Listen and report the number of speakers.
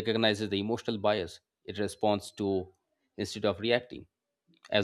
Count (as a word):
one